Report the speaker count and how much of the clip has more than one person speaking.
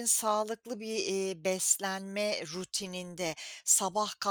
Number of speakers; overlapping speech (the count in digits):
1, no overlap